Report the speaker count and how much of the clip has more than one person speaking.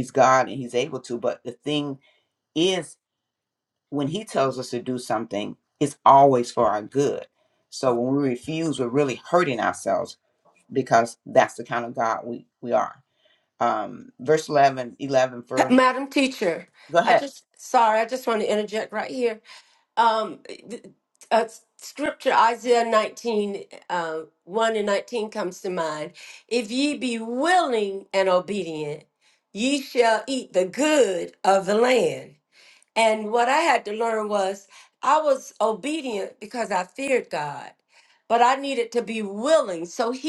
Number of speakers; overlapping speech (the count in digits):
2, about 1%